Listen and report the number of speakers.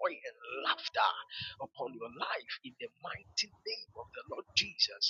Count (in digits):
1